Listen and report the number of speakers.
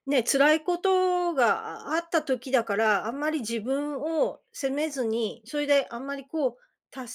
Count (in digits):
1